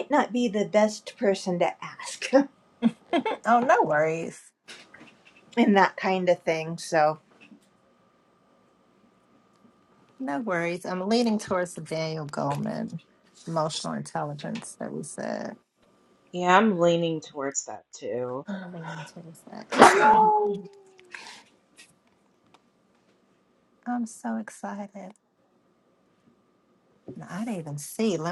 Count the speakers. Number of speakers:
three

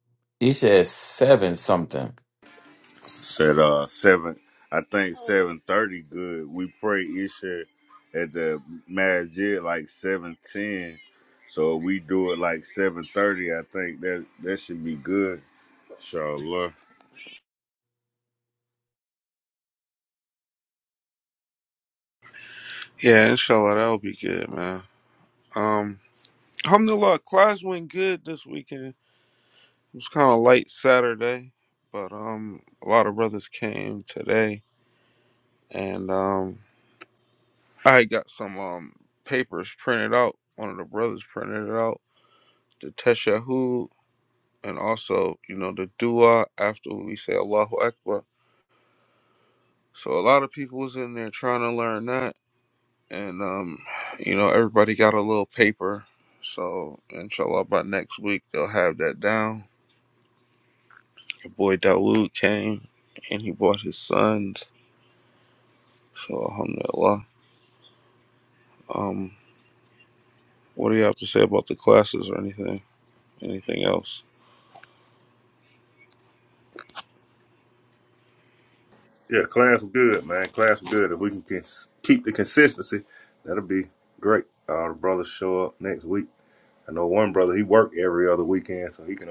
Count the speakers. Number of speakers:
four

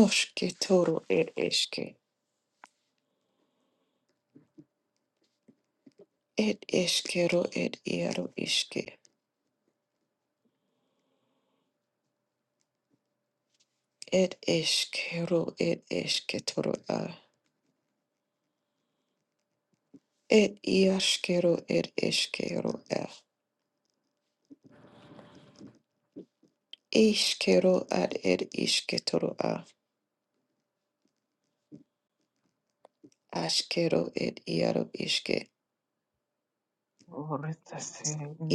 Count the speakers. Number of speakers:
two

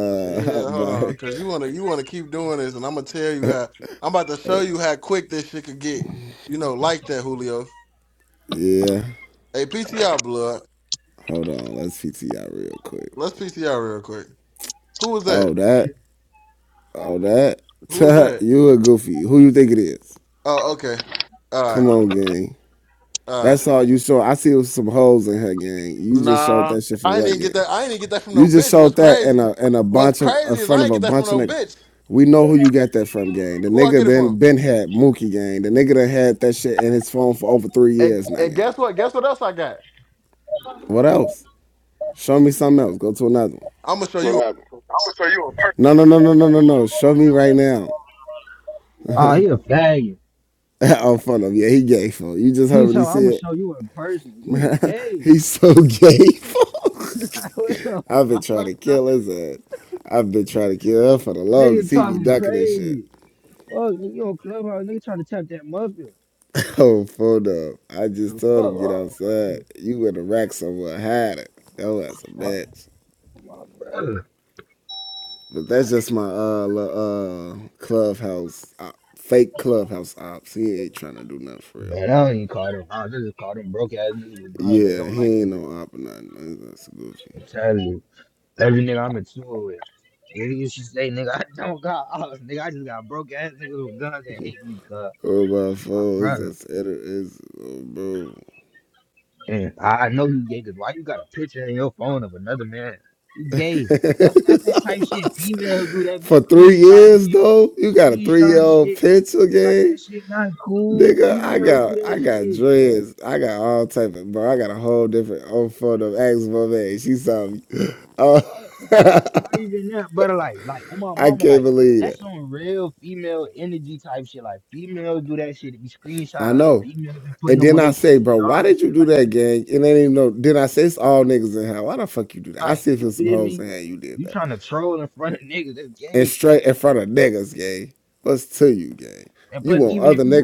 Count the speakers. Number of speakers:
four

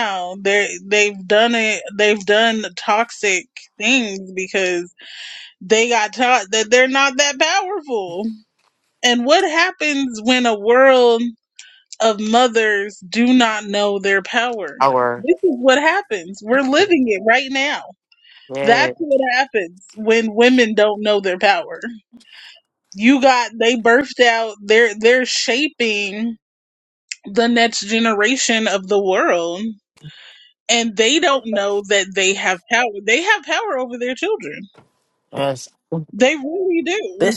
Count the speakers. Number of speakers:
two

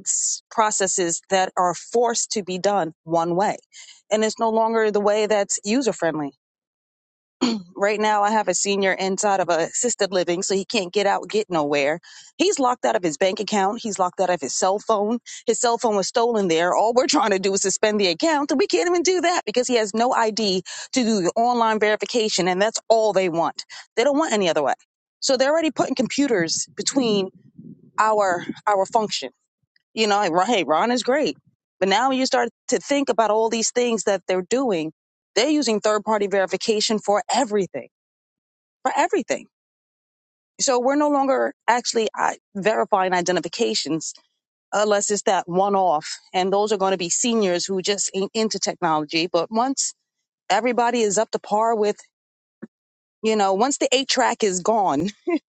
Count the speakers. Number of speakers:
one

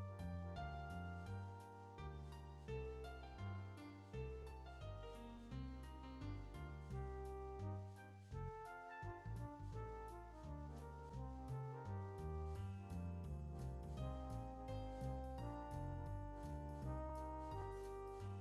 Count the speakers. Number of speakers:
zero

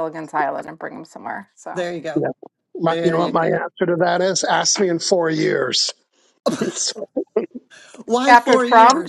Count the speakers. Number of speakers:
three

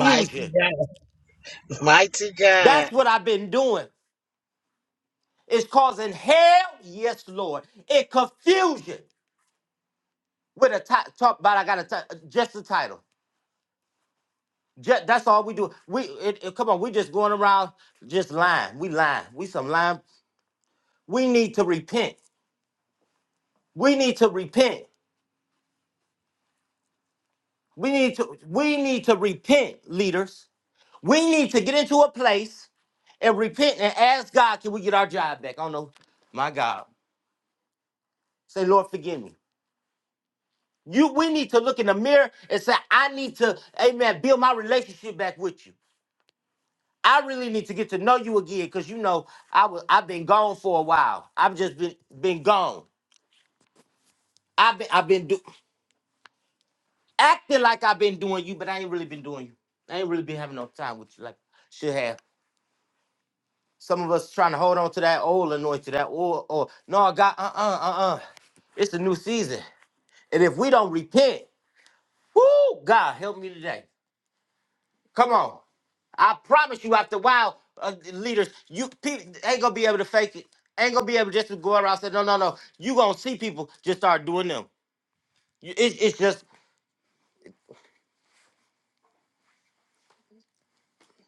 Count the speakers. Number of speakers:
two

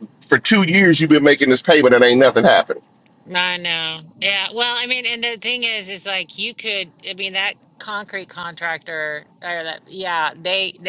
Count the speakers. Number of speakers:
two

